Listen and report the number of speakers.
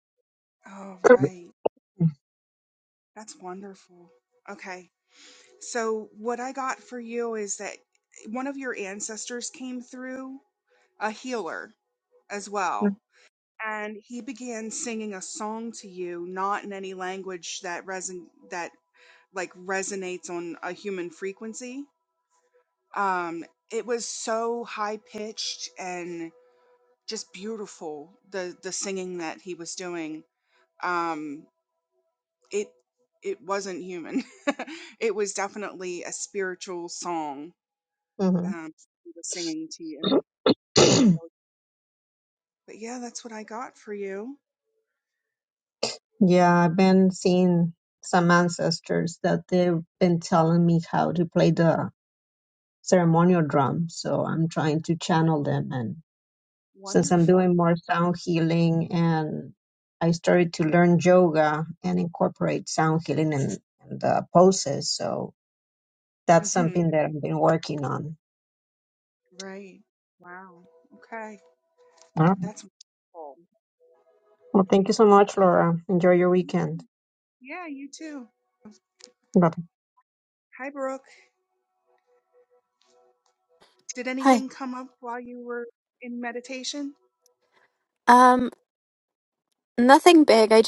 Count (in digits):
3